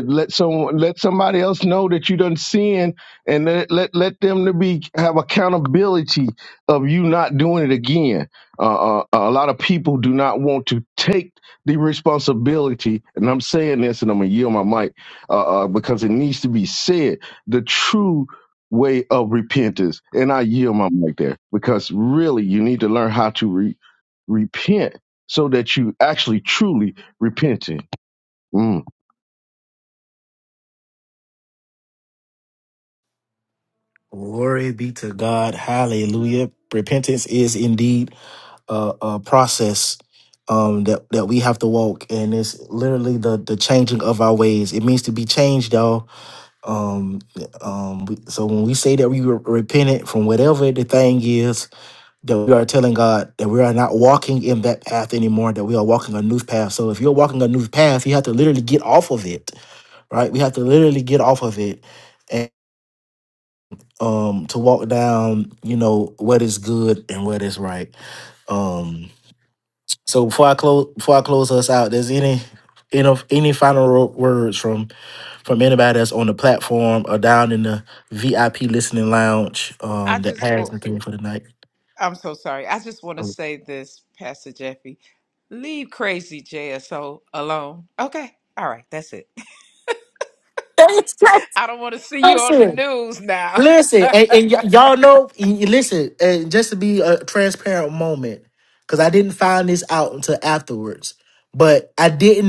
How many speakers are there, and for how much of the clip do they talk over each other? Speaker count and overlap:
3, about 2%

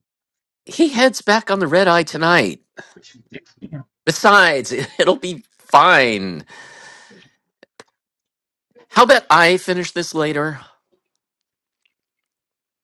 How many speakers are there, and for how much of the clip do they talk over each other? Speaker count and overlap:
1, no overlap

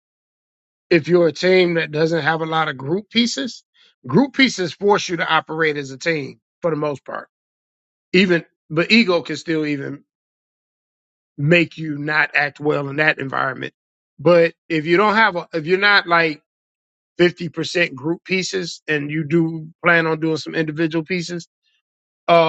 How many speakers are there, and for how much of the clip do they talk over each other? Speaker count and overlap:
1, no overlap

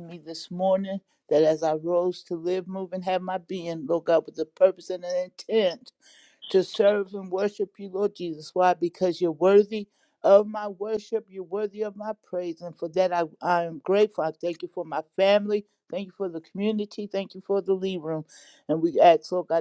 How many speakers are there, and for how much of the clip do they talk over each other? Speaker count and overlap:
1, no overlap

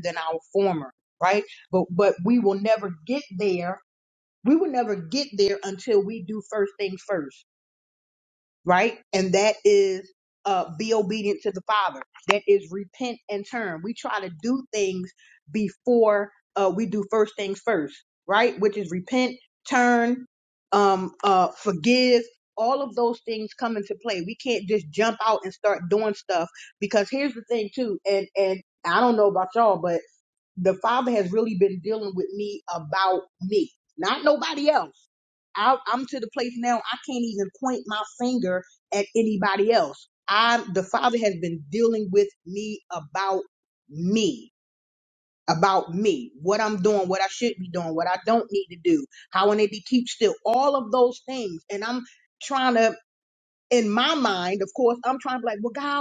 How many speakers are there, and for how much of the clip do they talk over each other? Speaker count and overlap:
1, no overlap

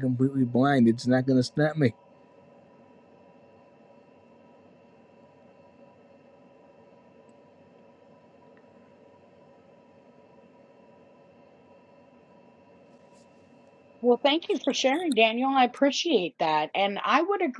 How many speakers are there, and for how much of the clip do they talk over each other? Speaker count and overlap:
2, no overlap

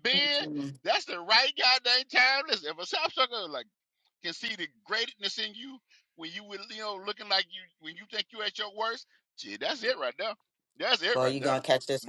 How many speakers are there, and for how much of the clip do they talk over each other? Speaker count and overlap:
2, about 7%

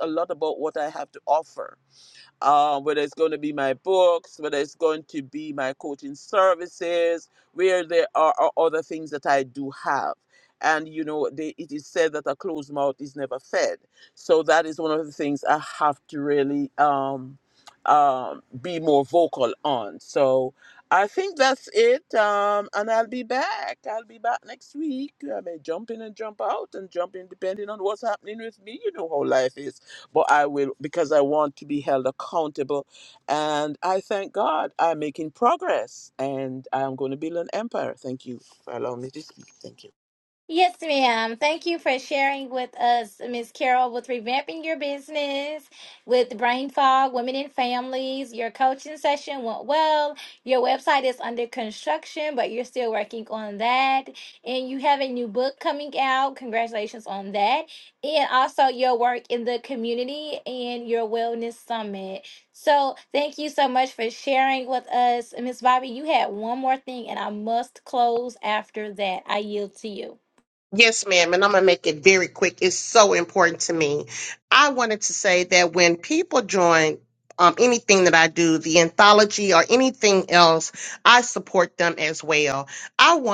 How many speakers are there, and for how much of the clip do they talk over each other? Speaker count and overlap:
3, no overlap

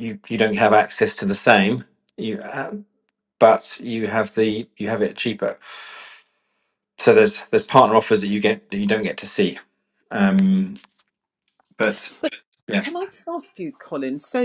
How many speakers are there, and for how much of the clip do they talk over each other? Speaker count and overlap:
2, under 1%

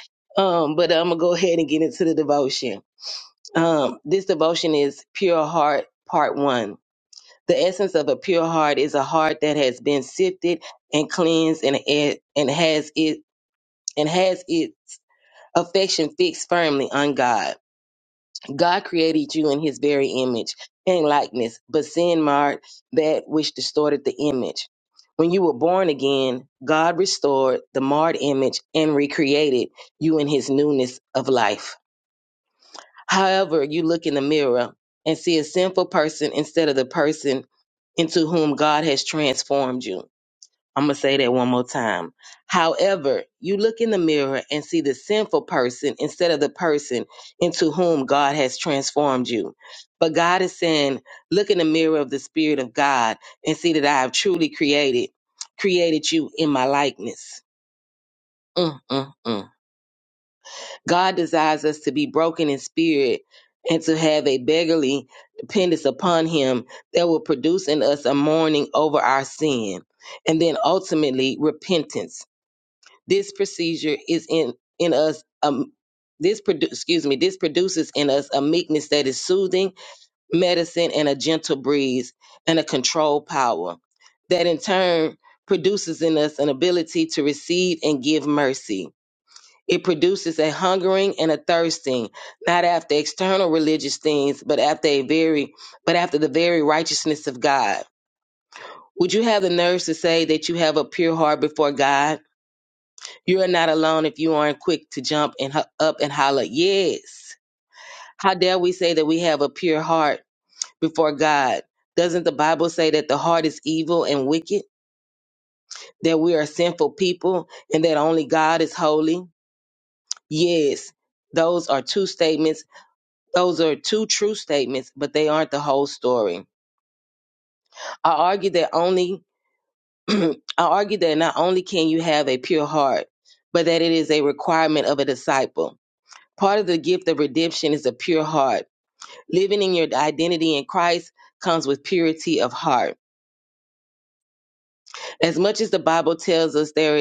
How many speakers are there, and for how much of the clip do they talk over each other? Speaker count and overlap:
1, no overlap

